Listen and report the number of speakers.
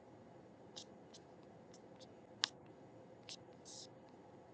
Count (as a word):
zero